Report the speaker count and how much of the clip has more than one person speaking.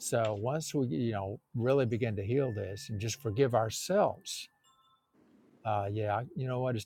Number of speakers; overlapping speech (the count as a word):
one, no overlap